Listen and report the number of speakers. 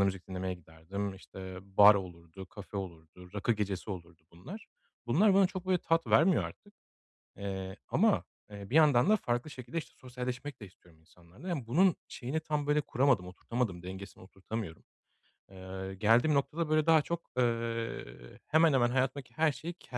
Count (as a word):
one